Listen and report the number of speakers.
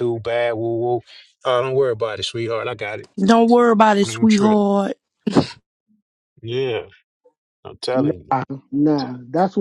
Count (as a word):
three